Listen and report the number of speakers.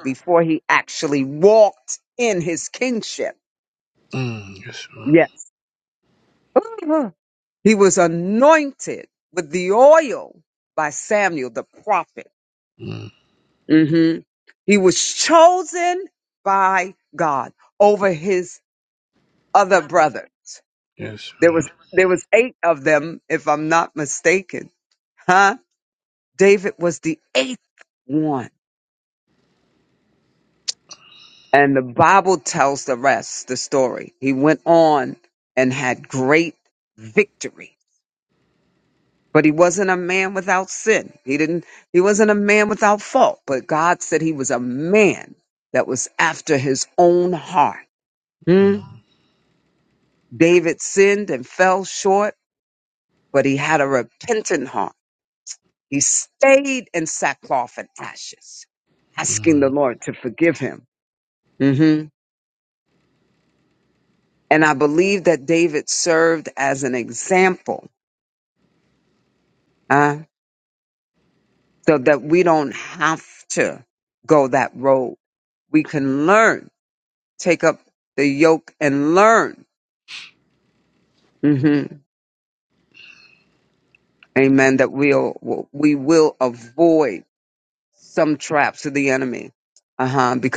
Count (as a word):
two